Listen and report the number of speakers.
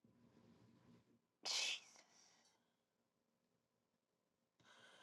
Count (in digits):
0